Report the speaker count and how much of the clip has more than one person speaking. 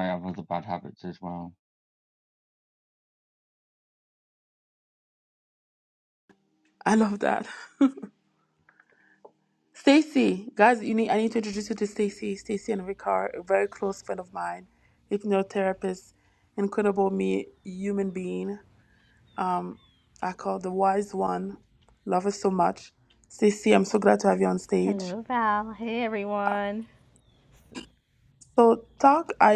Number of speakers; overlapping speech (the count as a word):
three, about 1%